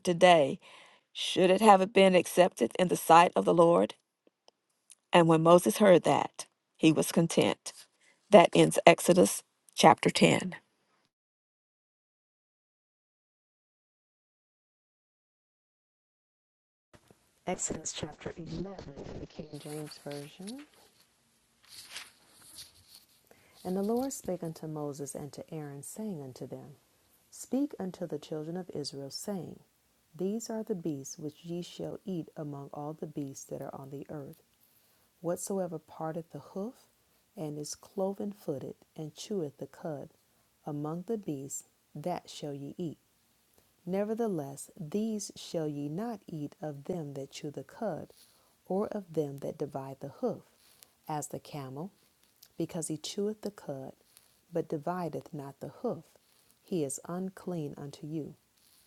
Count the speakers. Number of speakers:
two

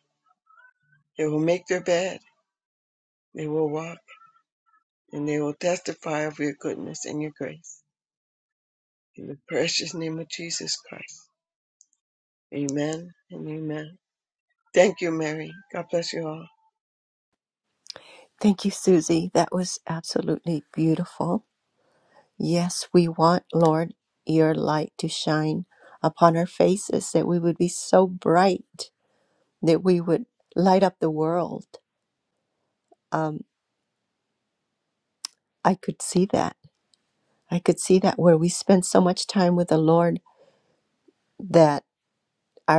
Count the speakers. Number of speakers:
two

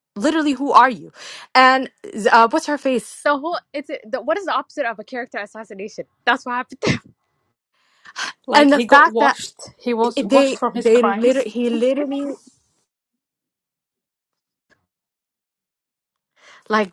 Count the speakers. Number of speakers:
three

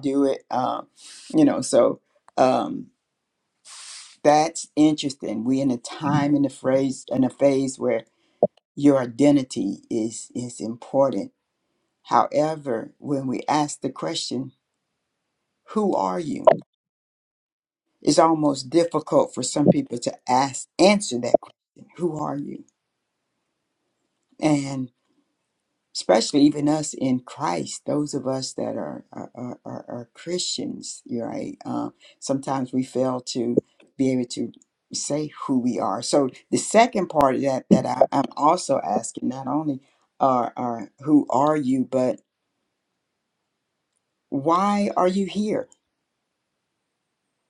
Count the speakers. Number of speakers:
one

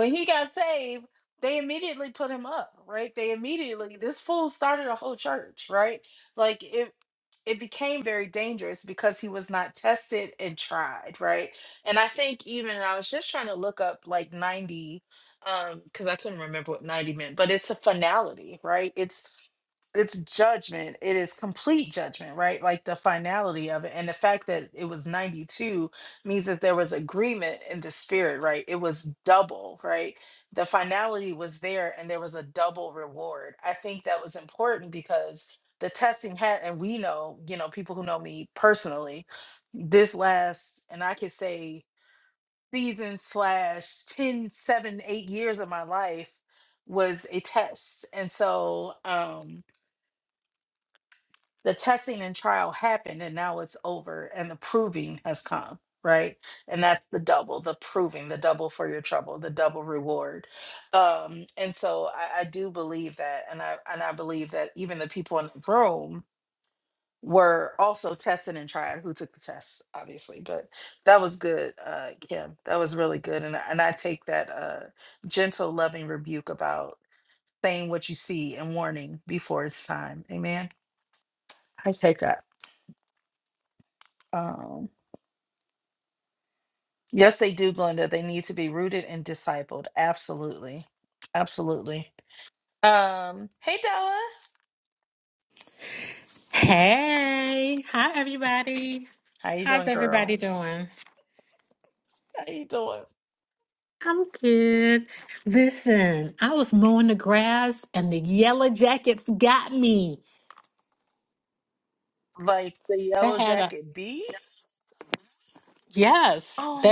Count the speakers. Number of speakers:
two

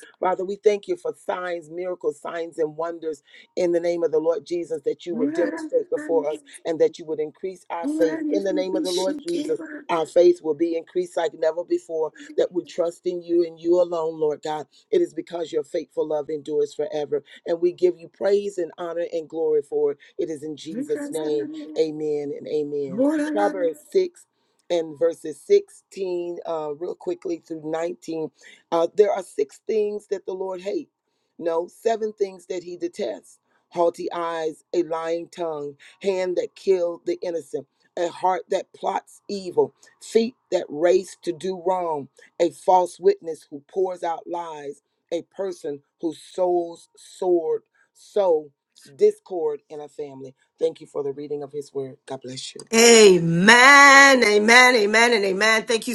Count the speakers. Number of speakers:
two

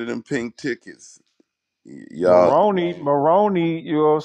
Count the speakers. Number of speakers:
two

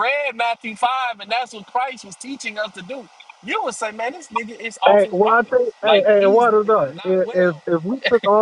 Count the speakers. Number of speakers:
two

